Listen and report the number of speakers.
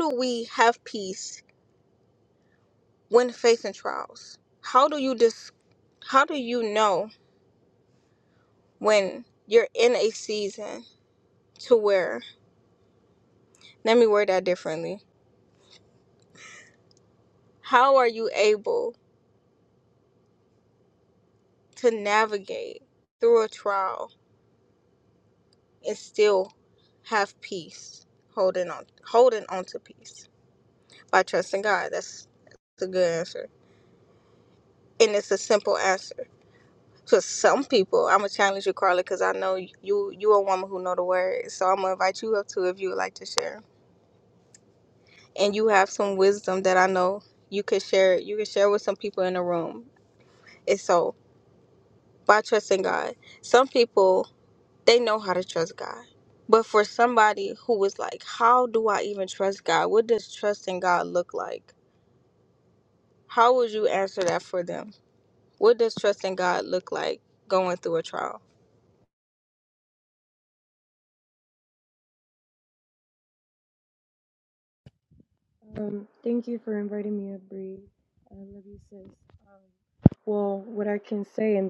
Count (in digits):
2